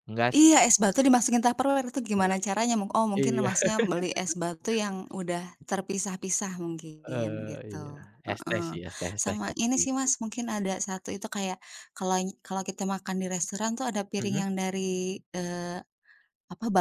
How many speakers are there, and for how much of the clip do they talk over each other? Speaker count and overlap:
2, about 19%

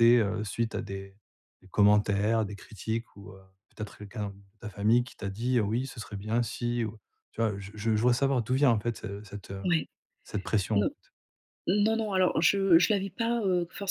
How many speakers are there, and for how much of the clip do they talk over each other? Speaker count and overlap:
2, about 1%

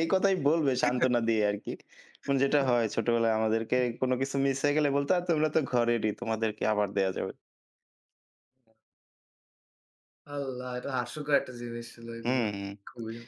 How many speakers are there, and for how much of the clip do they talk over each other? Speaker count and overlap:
2, about 2%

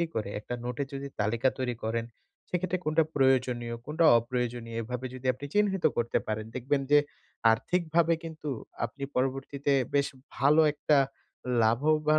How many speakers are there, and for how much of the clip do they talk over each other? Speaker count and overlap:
1, no overlap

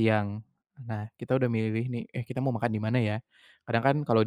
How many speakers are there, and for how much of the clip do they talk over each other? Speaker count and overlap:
1, no overlap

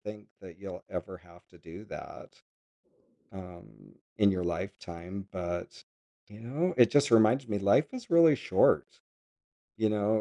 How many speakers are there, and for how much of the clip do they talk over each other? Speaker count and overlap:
1, no overlap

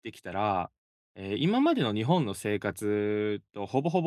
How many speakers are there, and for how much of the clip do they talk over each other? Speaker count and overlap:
1, no overlap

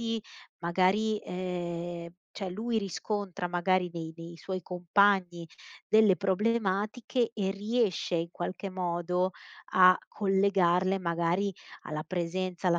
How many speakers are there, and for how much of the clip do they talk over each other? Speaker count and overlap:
1, no overlap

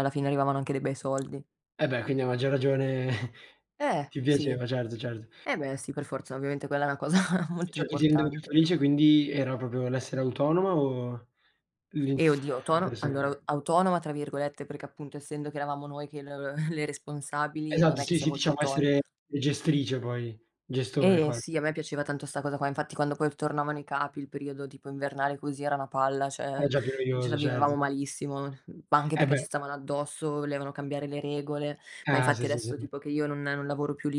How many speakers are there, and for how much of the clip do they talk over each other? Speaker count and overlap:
2, about 17%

